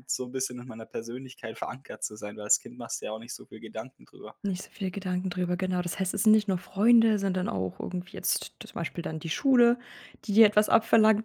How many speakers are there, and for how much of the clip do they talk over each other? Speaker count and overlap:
two, no overlap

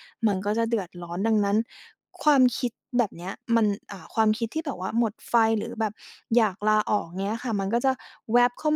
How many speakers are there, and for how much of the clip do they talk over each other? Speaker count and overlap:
one, no overlap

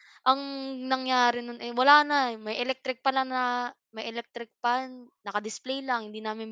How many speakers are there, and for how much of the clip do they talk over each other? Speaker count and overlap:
one, no overlap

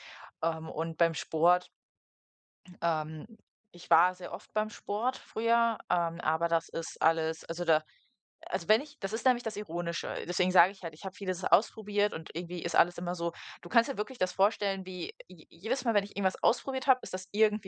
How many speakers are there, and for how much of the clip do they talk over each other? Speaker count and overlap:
one, no overlap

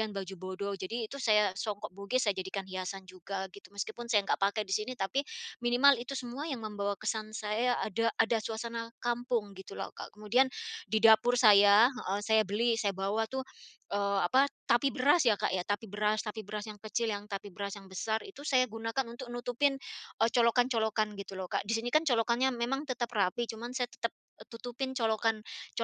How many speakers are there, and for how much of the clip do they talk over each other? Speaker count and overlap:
one, no overlap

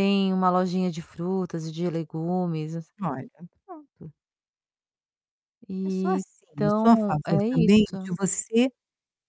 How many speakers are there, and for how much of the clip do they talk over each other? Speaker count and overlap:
two, about 15%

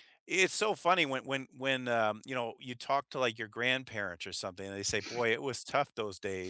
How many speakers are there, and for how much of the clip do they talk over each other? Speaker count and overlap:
one, no overlap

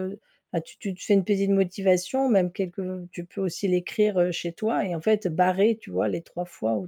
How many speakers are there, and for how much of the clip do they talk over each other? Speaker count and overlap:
one, no overlap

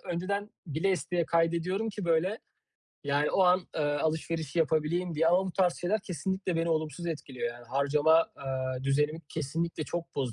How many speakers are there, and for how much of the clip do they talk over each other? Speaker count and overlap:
one, no overlap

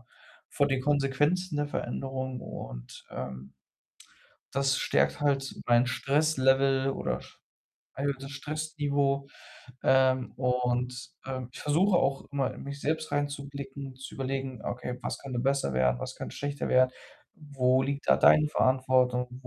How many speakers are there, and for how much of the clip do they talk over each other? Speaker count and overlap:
one, no overlap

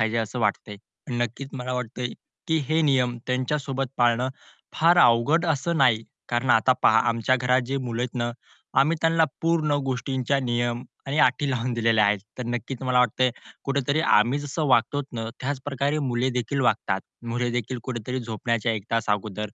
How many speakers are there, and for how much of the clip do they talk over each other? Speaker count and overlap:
one, no overlap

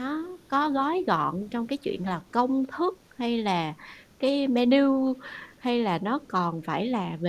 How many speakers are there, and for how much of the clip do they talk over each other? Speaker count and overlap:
one, no overlap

